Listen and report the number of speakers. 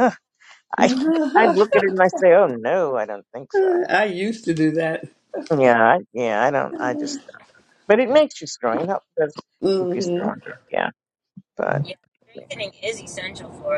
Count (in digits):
3